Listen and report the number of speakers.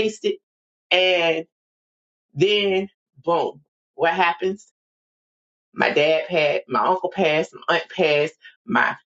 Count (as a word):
one